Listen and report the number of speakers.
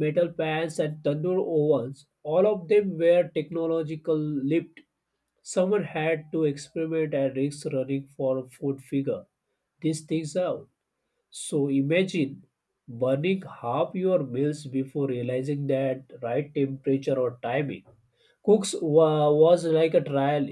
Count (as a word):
one